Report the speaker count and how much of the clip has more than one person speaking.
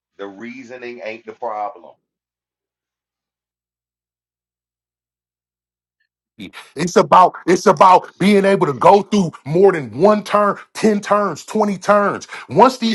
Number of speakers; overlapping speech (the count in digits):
2, no overlap